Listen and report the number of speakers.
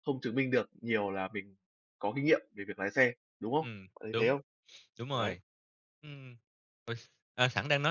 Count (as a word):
two